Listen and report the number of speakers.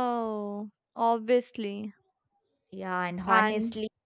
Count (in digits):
2